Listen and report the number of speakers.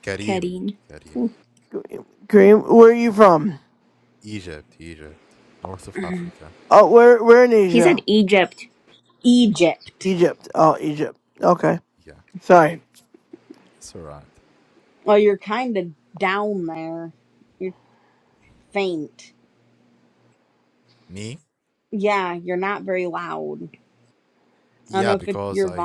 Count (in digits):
4